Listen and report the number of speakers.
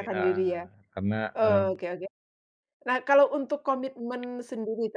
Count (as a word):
two